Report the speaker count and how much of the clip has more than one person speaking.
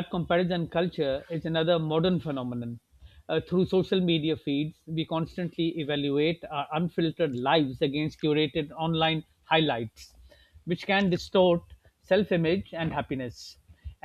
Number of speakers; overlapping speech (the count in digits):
1, no overlap